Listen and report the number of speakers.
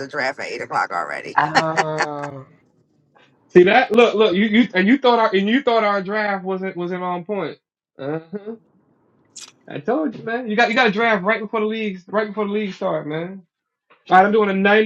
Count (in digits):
3